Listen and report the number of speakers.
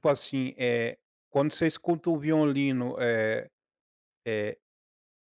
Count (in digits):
1